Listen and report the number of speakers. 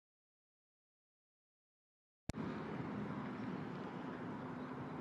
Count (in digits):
0